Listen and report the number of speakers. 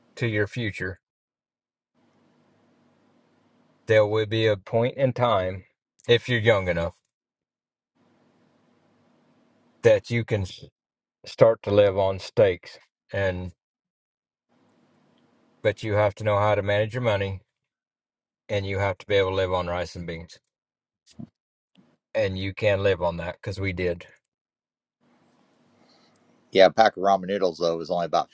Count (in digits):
2